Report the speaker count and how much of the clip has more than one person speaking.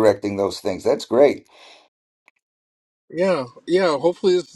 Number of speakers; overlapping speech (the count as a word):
two, no overlap